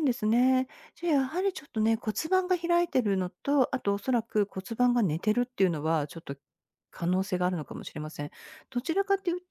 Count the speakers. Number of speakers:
1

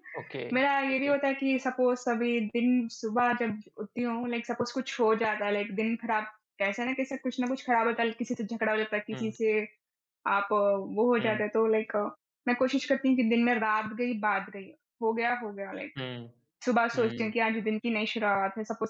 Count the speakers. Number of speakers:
2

